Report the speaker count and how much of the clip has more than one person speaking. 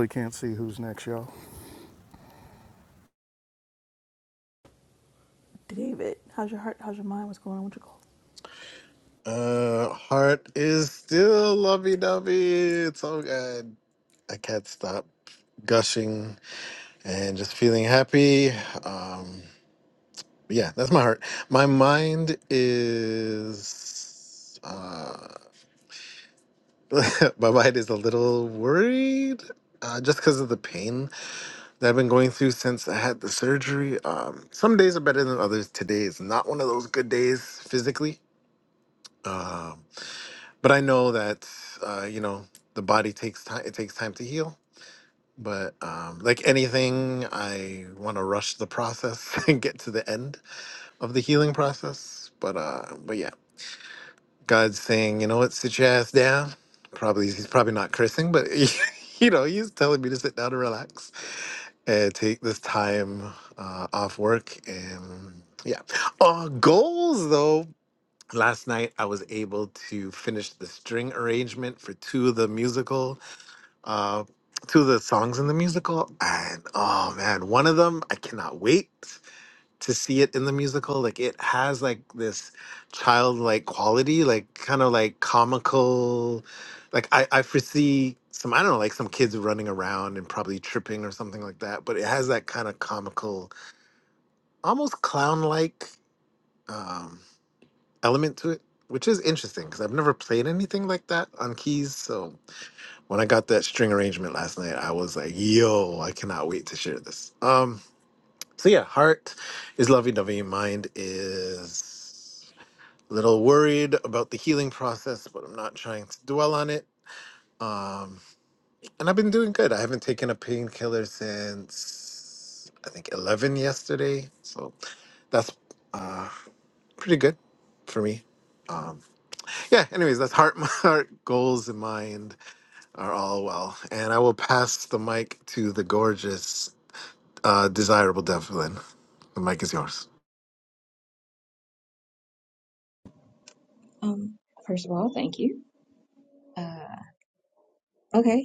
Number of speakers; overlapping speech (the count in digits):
4, no overlap